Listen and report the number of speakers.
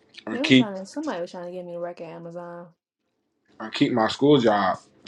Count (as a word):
two